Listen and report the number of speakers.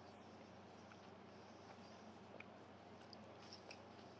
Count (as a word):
zero